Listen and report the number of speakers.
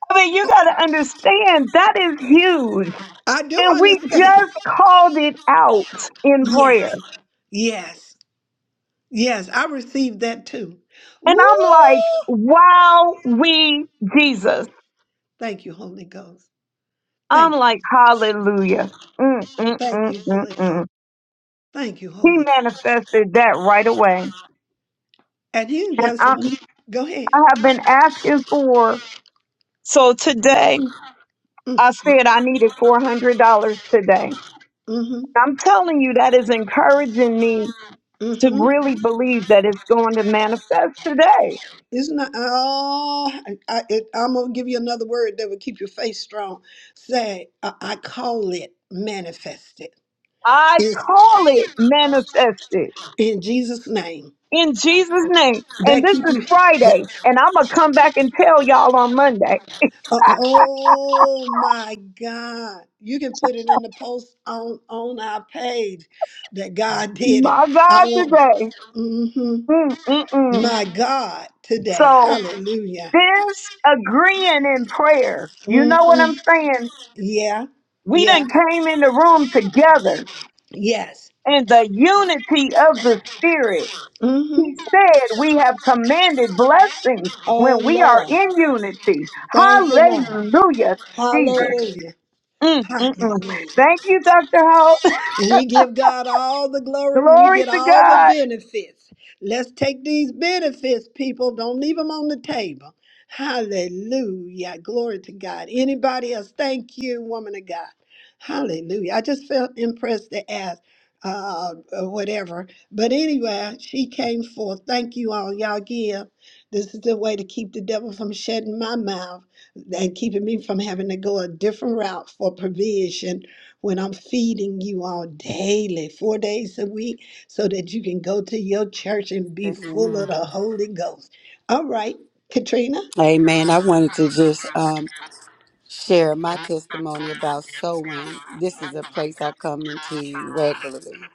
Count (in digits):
3